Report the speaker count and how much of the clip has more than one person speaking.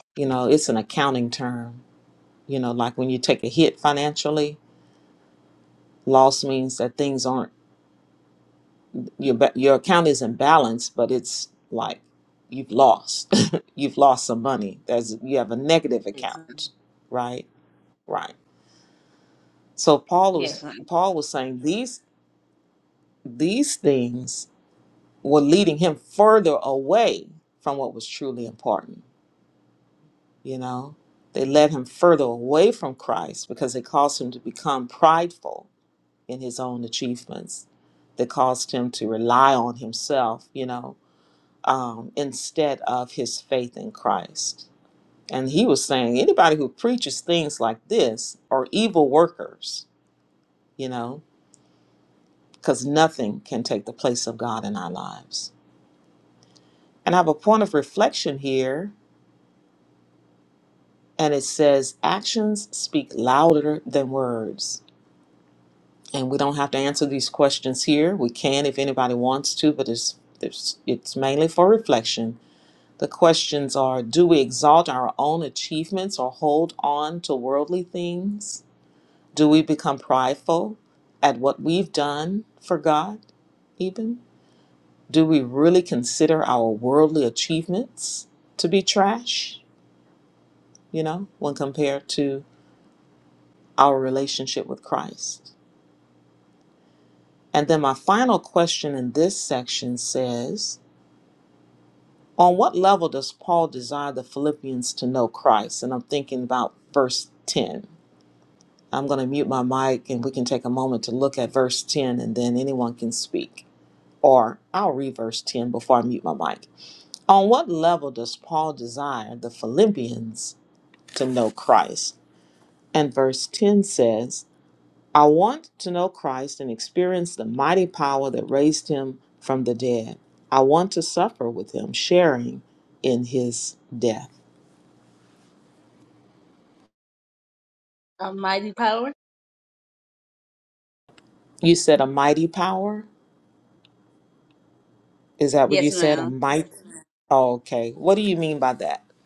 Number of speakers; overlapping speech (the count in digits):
2, about 1%